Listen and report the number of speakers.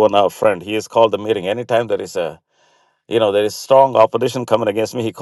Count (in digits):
1